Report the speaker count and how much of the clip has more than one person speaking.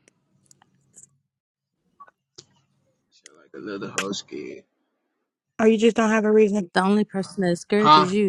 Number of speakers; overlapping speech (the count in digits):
3, about 3%